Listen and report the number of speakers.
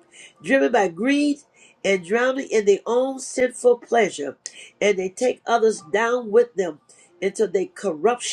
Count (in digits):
1